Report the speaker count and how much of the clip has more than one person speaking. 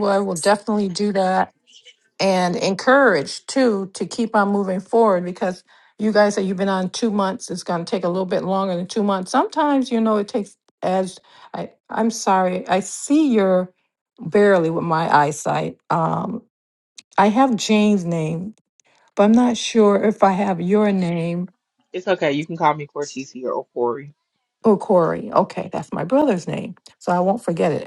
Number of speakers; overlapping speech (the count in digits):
2, no overlap